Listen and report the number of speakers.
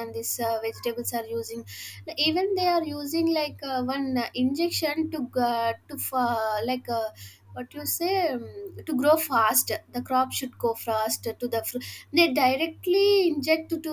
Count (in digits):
1